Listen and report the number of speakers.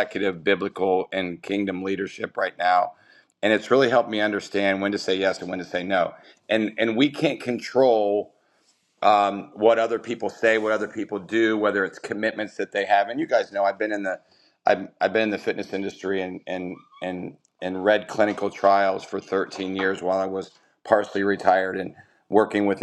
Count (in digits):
1